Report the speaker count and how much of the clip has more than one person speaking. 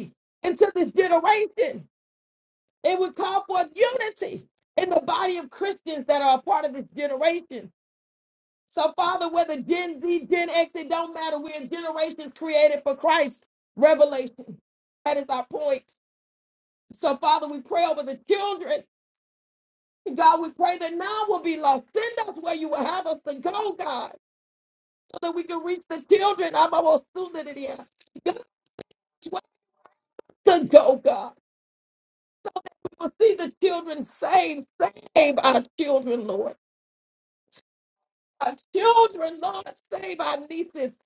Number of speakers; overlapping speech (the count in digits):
1, no overlap